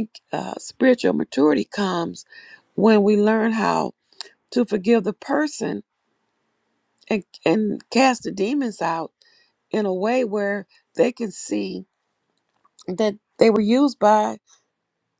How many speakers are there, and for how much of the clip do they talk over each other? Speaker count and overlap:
one, no overlap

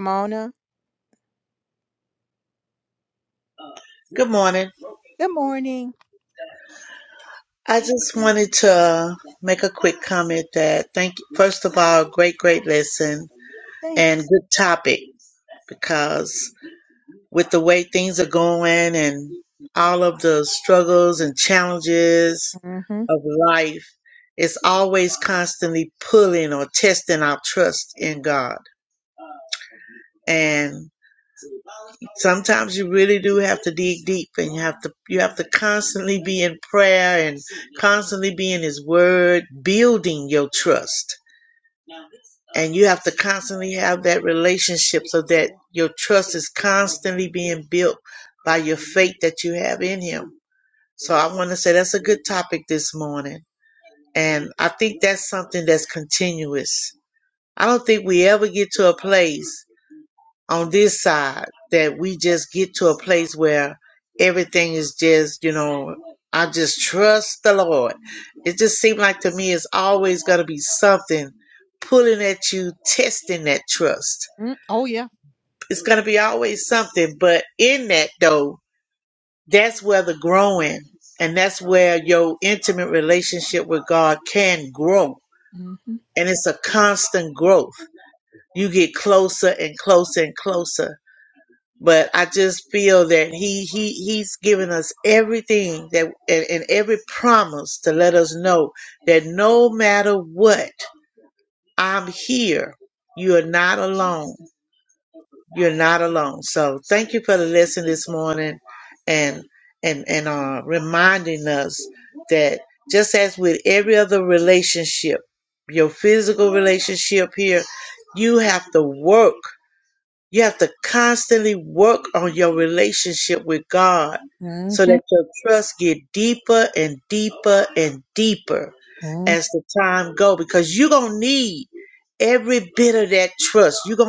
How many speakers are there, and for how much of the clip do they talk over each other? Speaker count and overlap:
two, under 1%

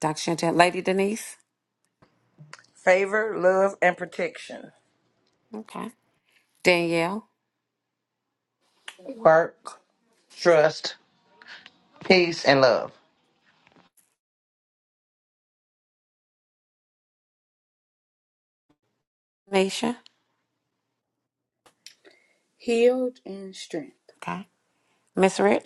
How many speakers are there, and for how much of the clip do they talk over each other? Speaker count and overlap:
four, no overlap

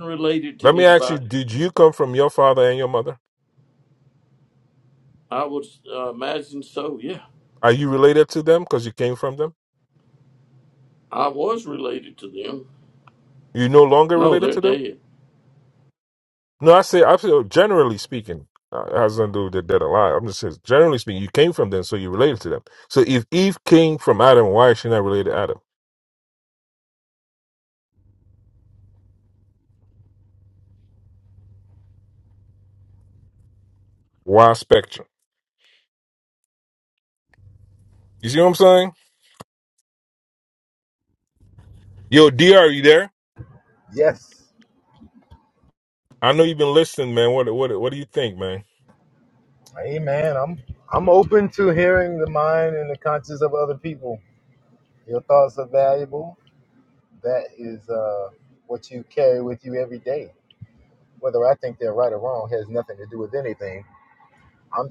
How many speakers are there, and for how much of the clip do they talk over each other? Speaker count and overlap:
three, about 2%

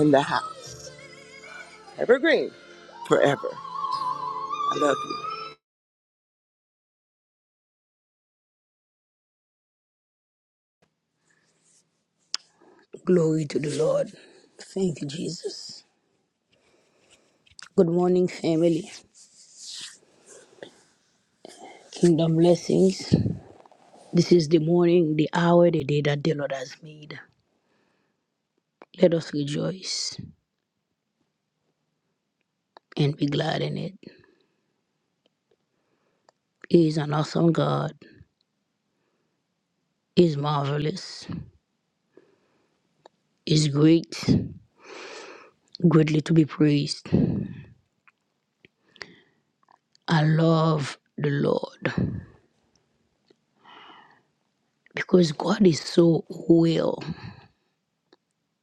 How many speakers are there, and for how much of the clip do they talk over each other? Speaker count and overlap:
two, no overlap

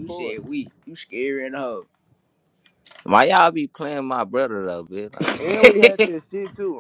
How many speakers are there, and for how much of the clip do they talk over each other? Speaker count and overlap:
three, about 6%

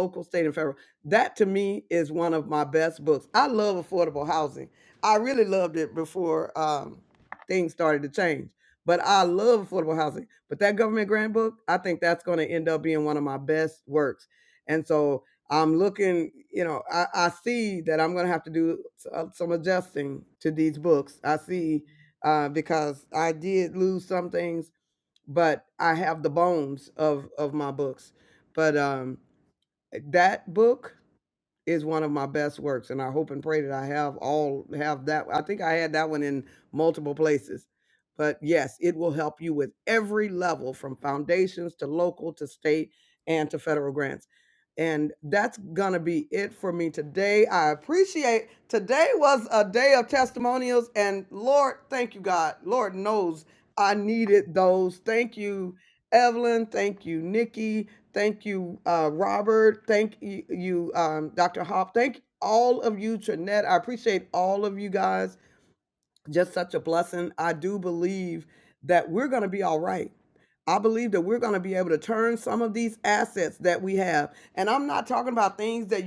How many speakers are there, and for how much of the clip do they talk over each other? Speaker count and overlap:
one, no overlap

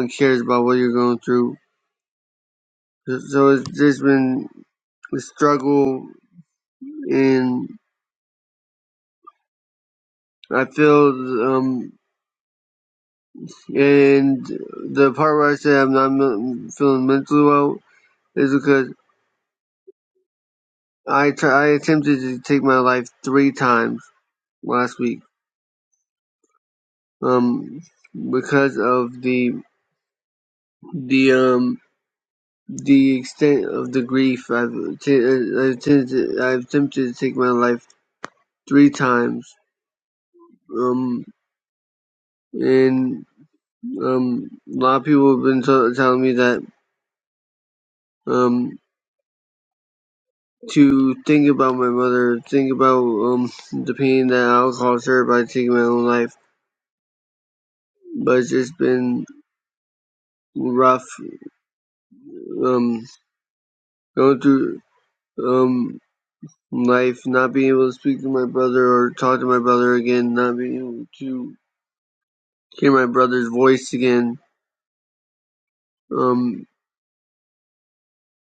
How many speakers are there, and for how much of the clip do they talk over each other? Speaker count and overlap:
one, no overlap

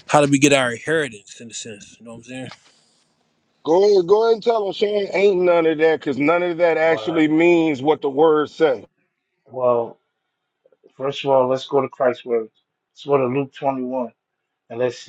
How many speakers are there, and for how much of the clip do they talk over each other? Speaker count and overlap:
three, about 2%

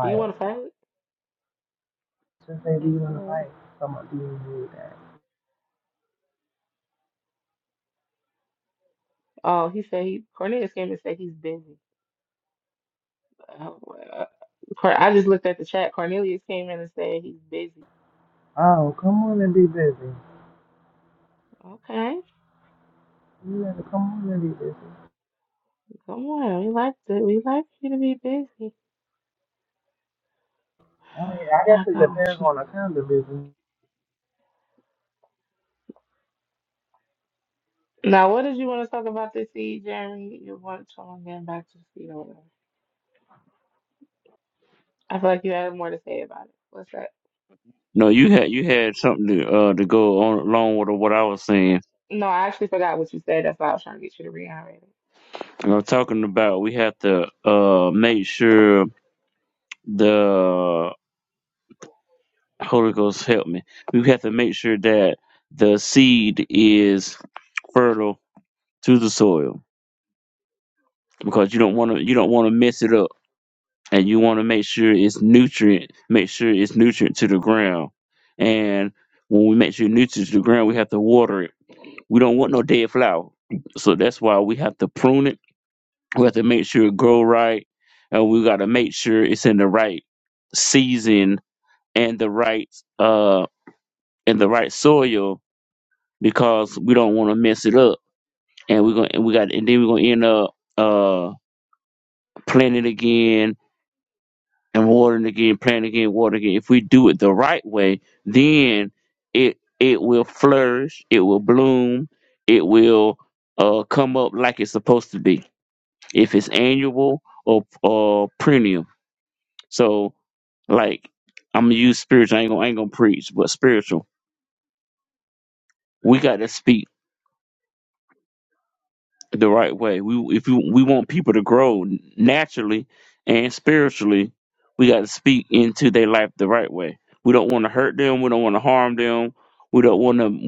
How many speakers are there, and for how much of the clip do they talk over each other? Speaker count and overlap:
three, about 1%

